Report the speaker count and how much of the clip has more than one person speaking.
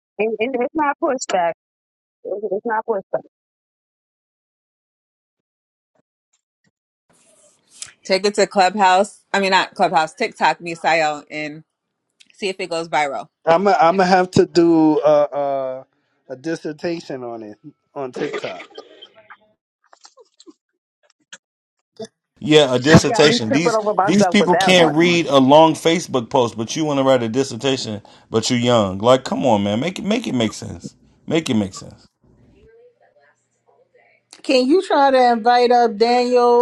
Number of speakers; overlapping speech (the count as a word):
five, about 4%